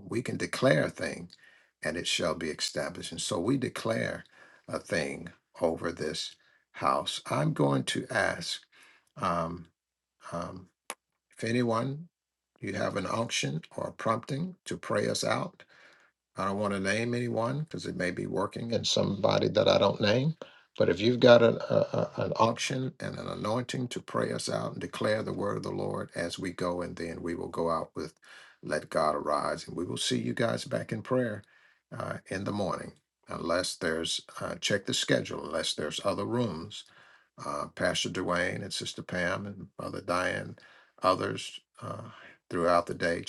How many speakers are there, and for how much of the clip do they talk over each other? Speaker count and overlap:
one, no overlap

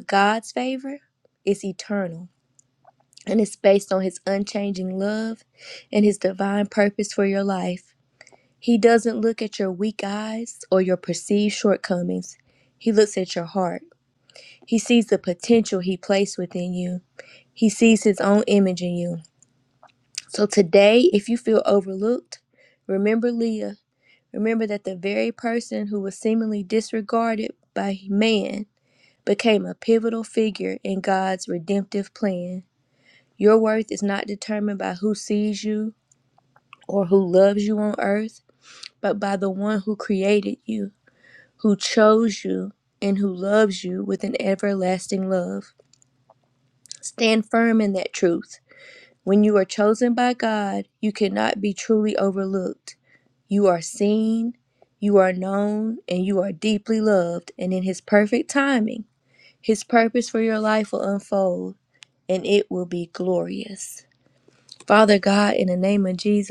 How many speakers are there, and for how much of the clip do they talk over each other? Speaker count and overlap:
one, no overlap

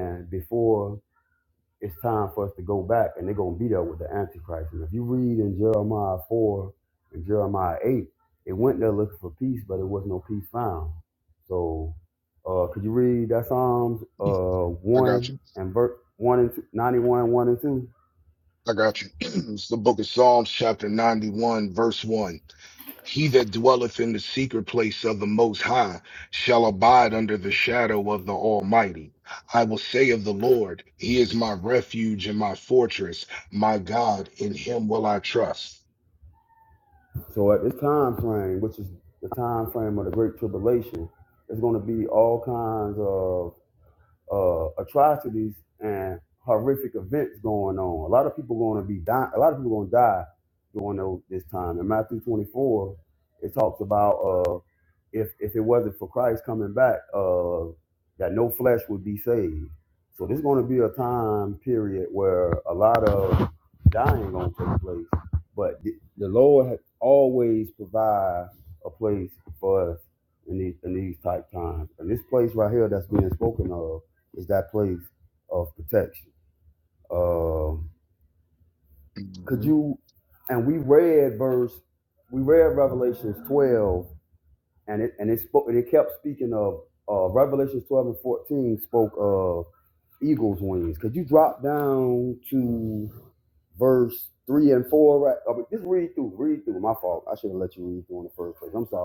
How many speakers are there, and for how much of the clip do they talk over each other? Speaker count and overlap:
two, under 1%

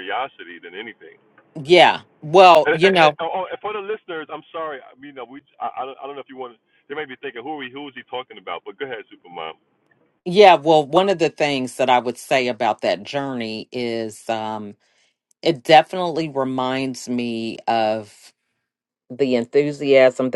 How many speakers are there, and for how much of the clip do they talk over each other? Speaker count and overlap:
two, about 3%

